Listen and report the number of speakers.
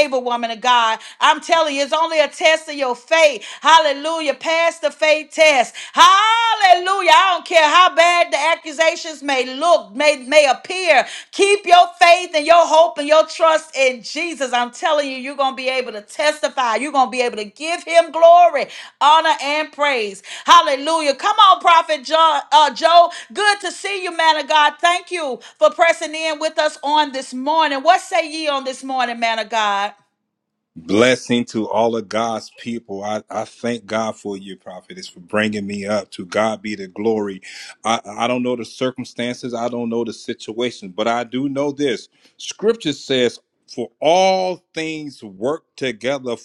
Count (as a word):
two